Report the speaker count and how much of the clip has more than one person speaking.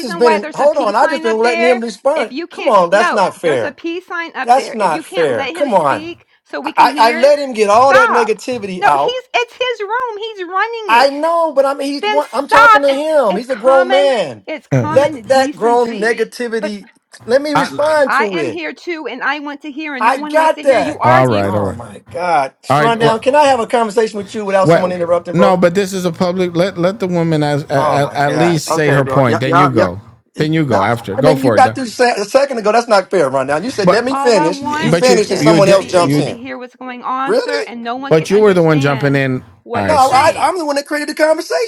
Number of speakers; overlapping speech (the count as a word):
three, about 52%